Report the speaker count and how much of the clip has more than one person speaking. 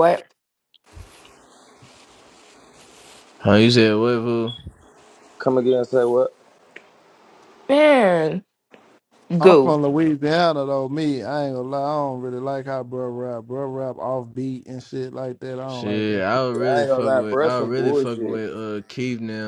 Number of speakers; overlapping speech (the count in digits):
4, about 15%